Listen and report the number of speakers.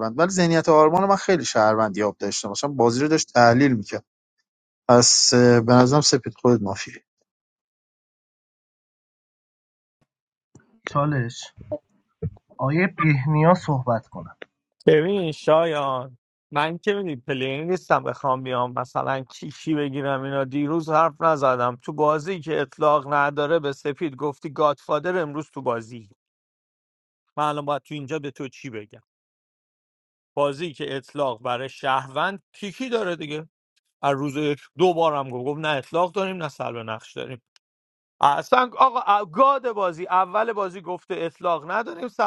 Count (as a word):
three